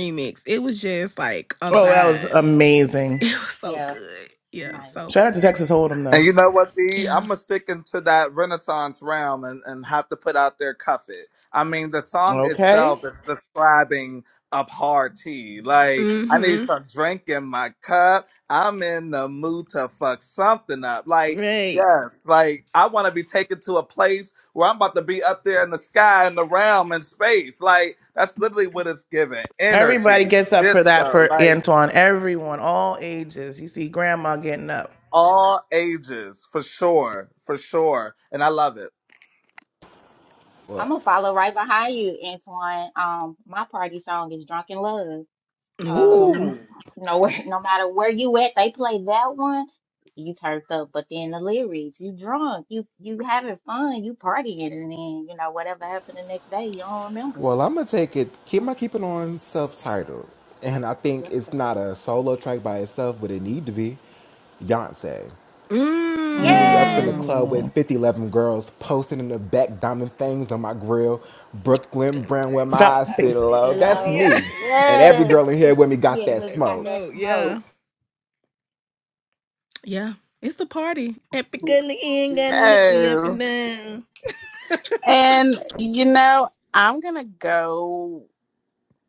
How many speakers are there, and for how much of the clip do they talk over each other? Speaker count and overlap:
six, about 15%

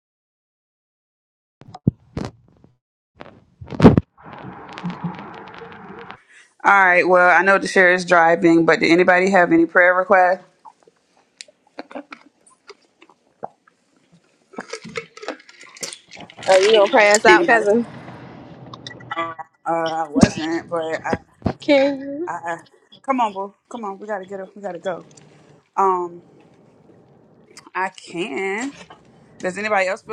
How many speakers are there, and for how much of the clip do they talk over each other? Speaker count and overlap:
two, about 2%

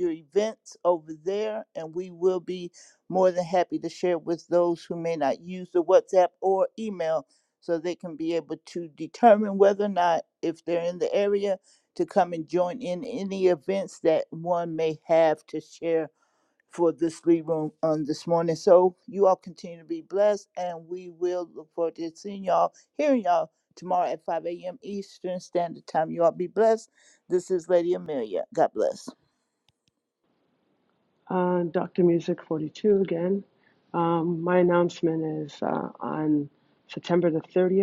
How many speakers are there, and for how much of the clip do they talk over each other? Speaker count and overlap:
two, no overlap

